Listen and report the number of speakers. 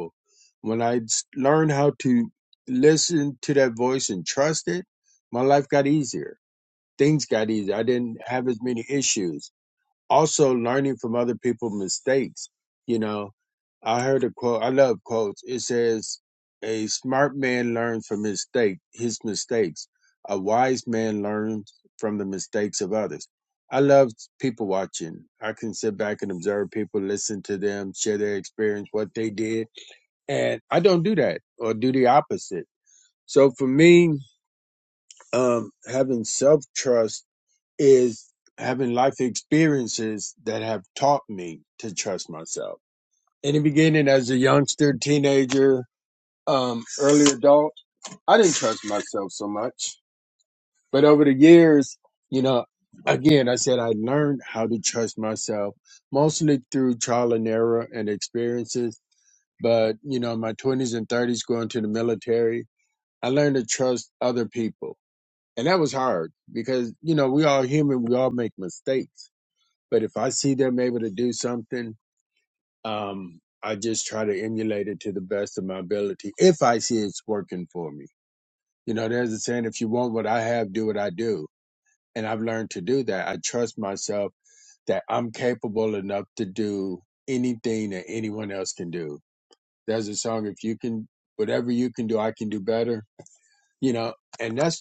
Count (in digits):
1